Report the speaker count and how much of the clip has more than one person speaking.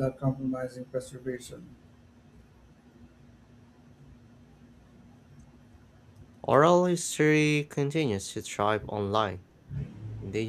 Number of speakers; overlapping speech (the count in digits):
2, no overlap